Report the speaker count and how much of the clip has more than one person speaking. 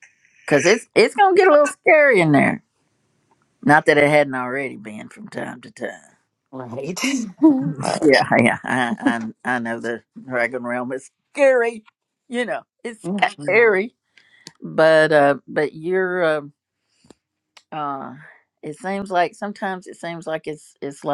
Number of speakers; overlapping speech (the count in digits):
2, about 1%